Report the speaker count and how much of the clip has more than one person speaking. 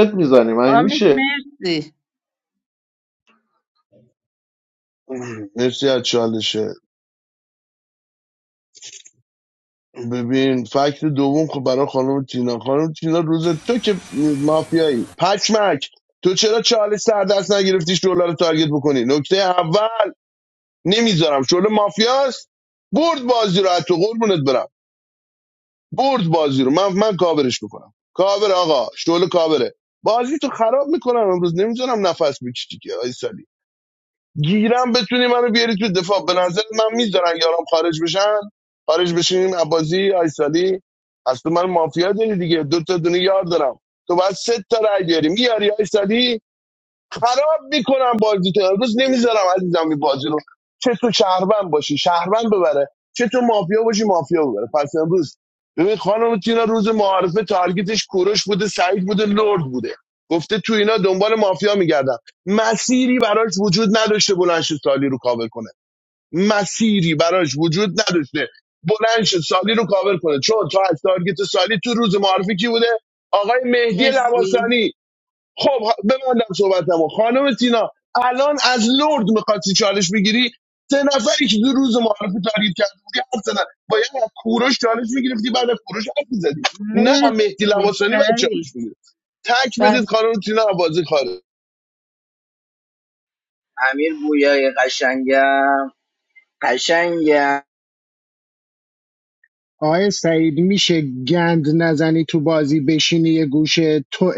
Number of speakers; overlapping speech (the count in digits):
5, about 2%